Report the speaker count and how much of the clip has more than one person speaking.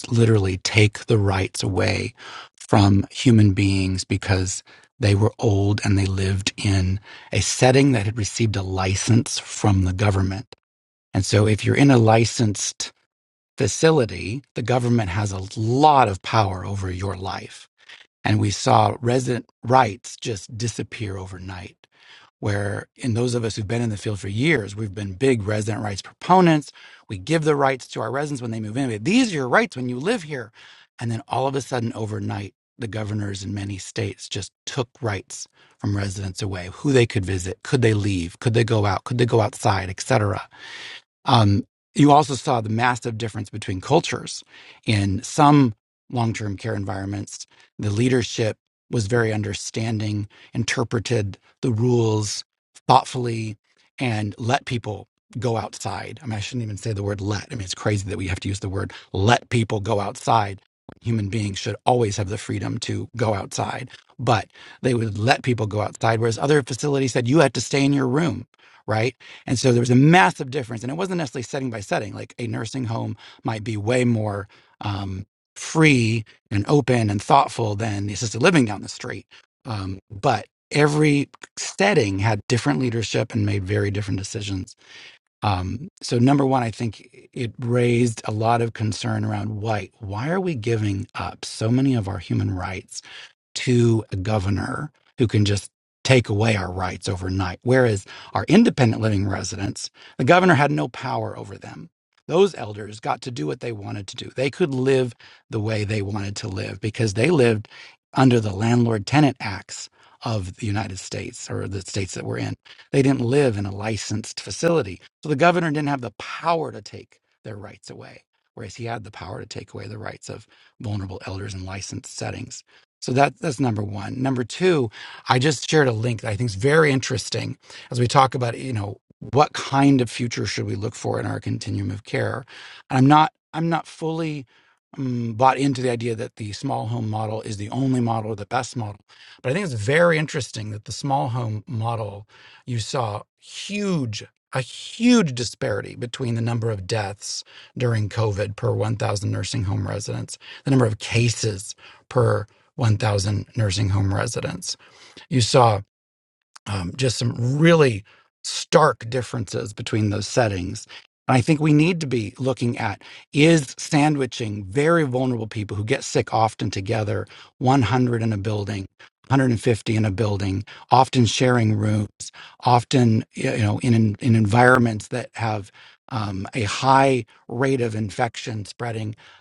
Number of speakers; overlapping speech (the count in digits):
1, no overlap